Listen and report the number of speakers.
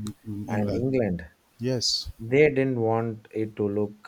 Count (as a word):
two